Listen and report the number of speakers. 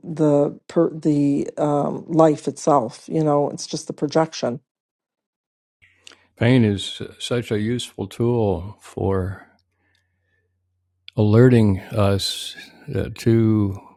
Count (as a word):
two